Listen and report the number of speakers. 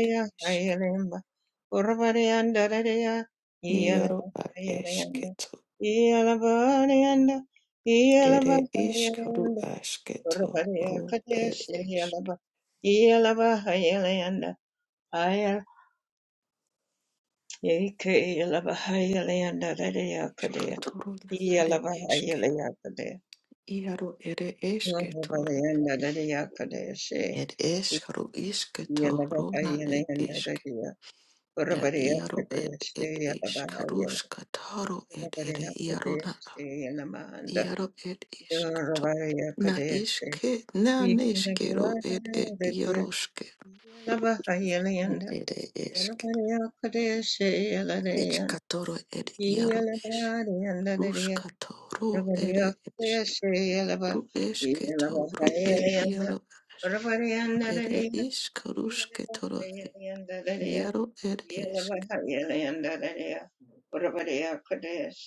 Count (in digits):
2